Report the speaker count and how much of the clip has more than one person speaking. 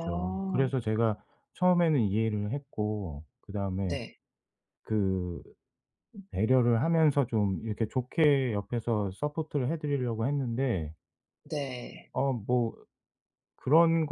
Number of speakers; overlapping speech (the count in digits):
2, about 6%